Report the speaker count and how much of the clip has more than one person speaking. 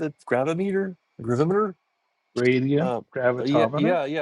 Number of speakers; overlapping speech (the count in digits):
2, about 20%